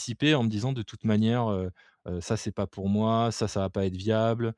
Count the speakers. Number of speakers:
one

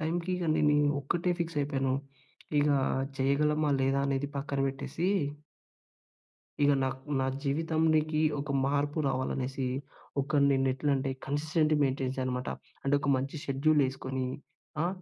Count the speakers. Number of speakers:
one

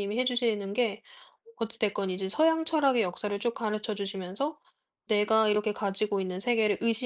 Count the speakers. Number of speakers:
one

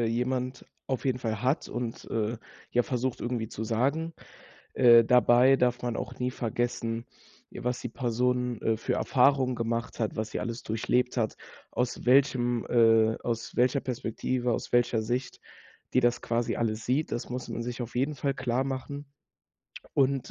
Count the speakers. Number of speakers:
one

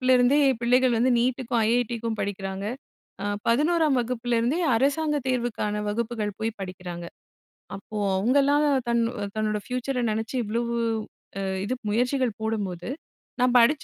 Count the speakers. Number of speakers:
one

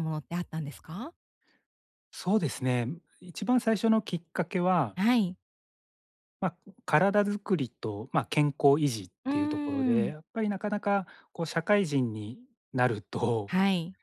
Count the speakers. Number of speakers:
two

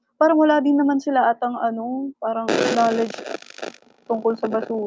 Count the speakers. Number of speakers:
one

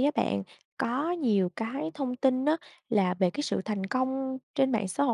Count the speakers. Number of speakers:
one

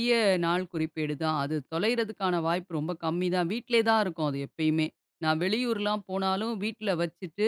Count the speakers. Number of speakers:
one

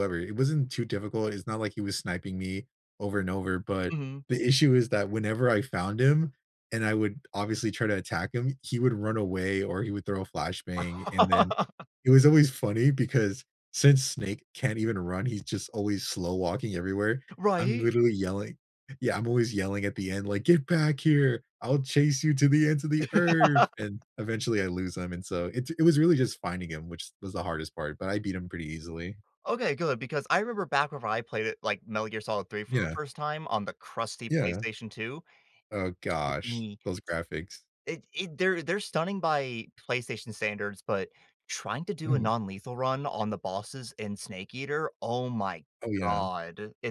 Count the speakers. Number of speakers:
two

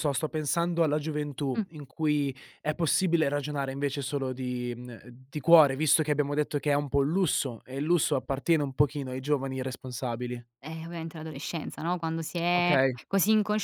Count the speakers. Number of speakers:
two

